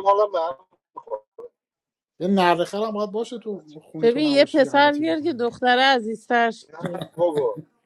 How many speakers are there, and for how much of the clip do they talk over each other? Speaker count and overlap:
3, about 23%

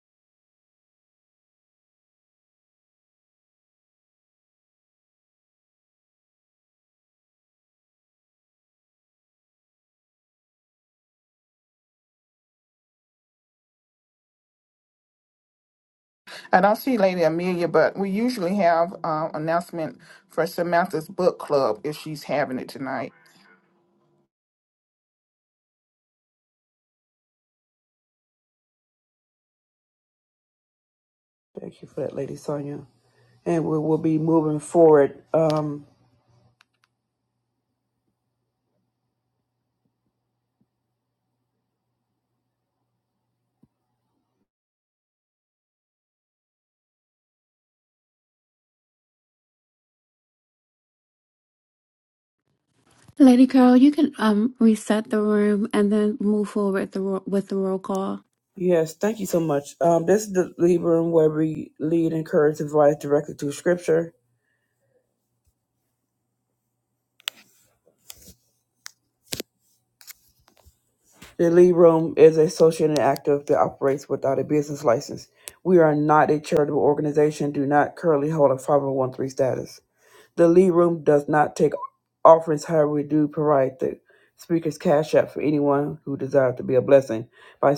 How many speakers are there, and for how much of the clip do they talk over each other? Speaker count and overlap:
3, no overlap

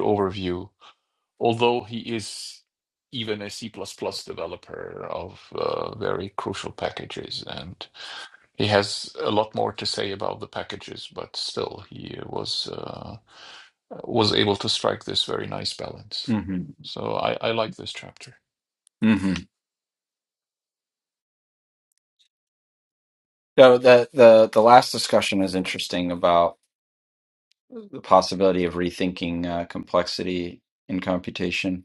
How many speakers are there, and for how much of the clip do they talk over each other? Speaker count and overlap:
2, under 1%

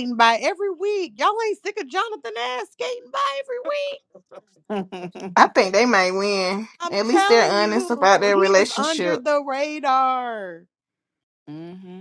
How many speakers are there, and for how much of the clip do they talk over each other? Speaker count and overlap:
3, about 21%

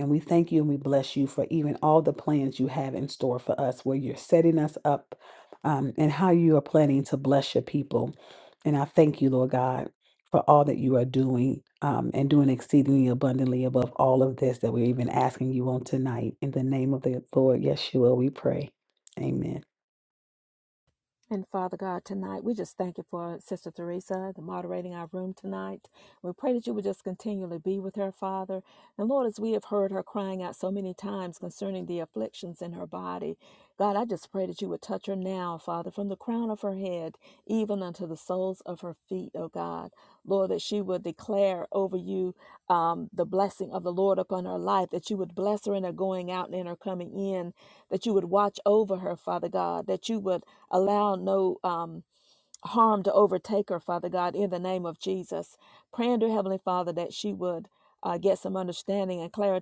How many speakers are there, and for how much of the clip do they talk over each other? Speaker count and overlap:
2, no overlap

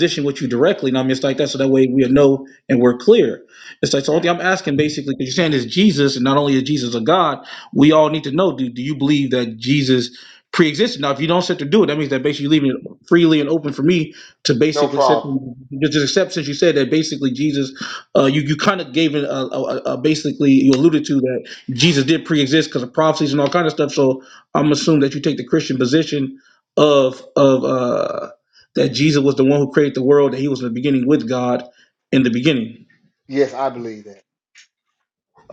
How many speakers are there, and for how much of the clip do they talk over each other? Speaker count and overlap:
2, about 1%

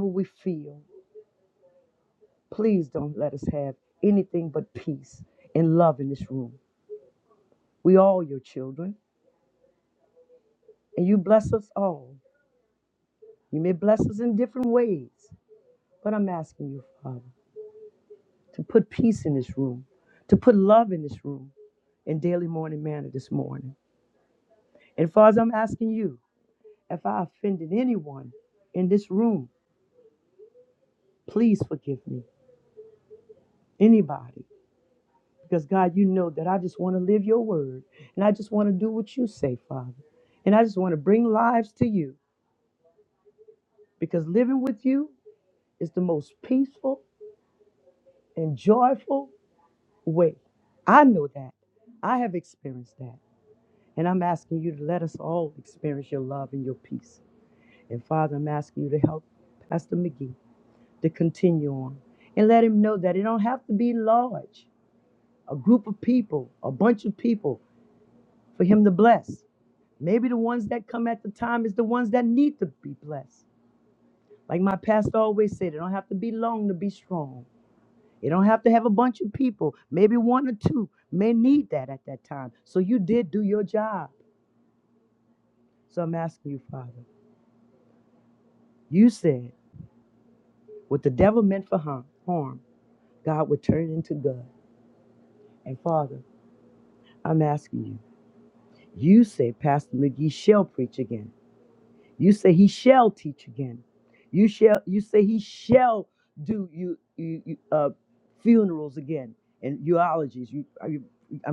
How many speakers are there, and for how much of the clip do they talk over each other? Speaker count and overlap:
1, no overlap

